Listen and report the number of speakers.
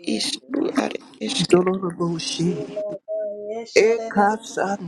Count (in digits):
3